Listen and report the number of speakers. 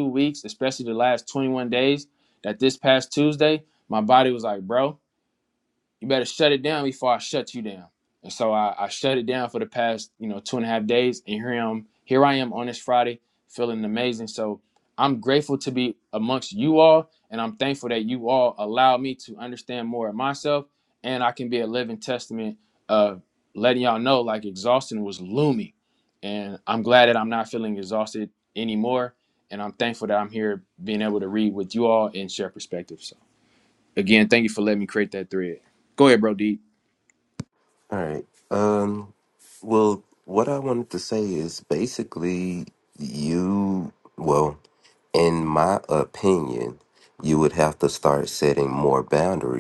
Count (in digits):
2